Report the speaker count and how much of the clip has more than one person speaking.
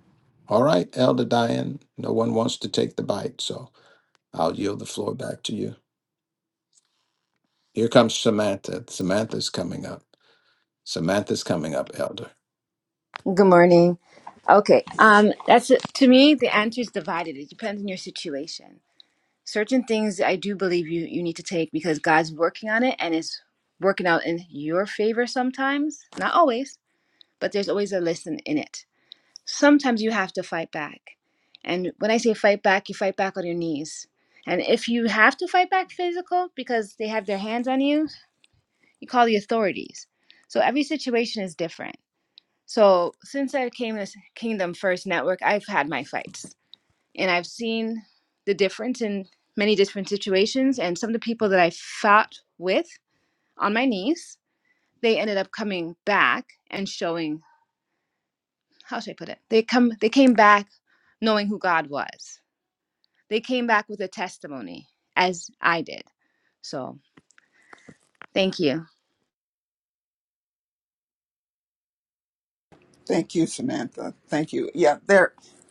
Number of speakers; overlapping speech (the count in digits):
3, no overlap